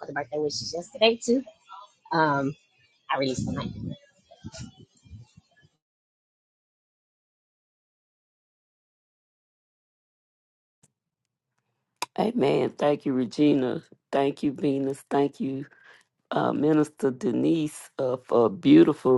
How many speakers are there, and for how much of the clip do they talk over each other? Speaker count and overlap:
two, no overlap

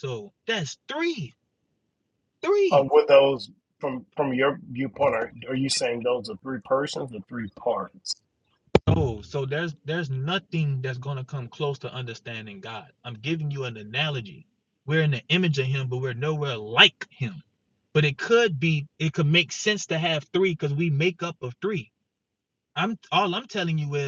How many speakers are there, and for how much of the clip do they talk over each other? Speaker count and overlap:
two, under 1%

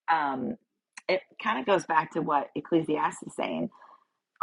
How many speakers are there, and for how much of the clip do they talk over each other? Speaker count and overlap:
one, no overlap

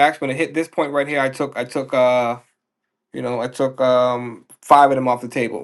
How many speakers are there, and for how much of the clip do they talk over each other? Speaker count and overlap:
one, no overlap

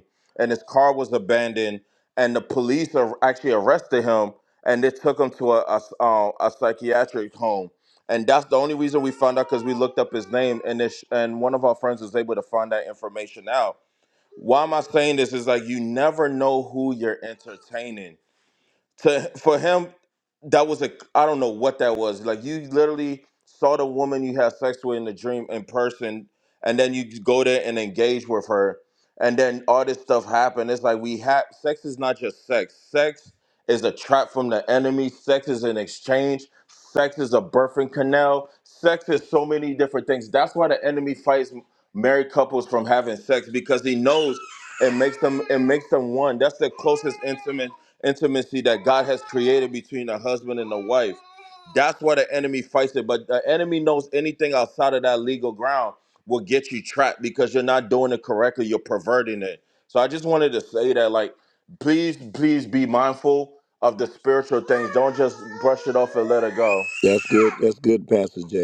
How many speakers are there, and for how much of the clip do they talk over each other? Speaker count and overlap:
two, no overlap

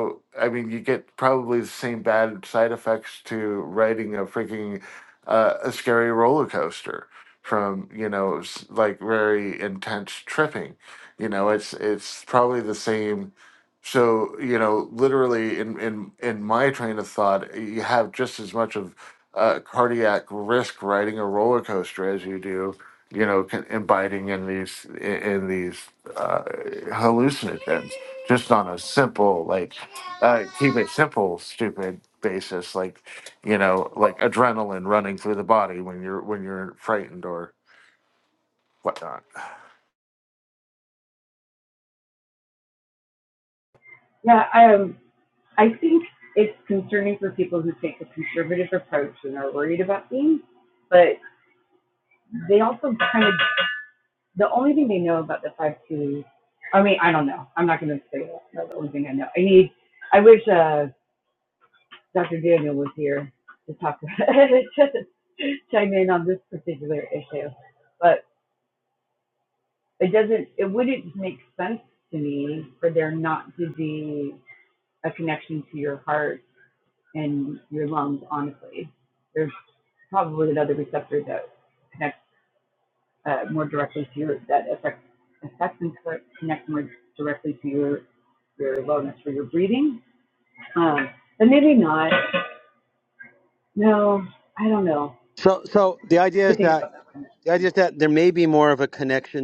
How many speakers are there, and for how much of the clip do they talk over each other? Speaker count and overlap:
three, under 1%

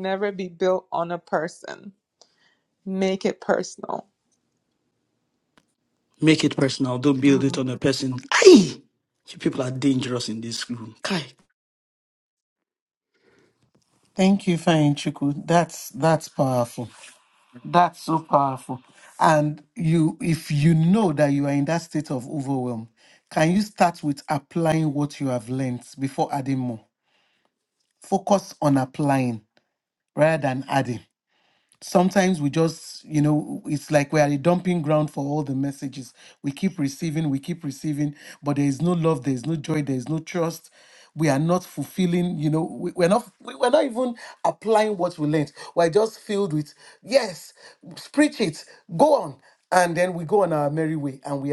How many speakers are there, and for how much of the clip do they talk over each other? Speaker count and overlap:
three, about 1%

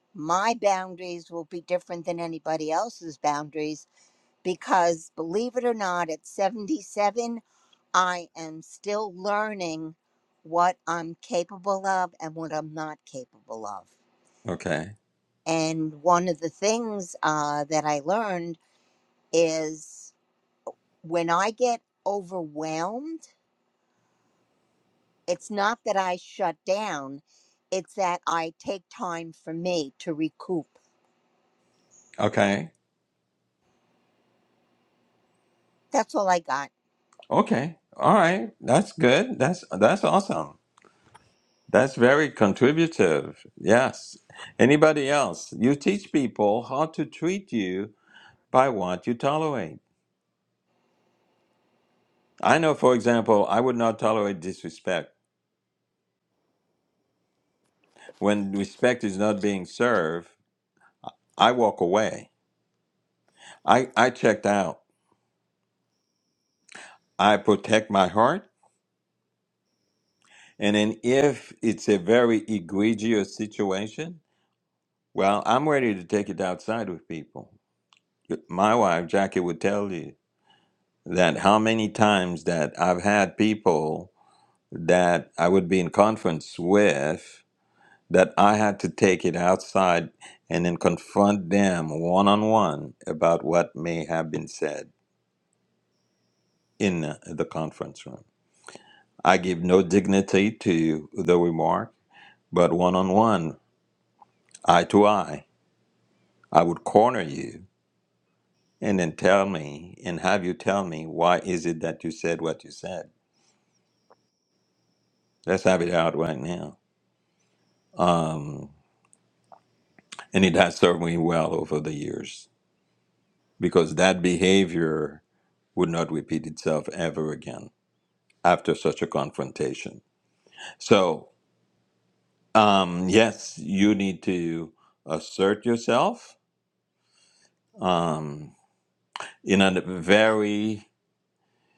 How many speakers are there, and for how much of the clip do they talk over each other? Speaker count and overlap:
two, no overlap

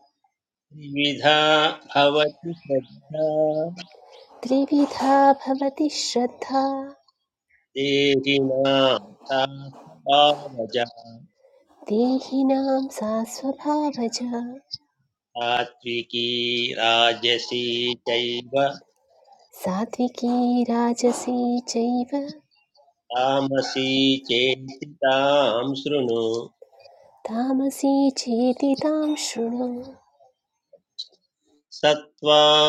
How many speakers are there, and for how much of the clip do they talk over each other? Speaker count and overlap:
two, no overlap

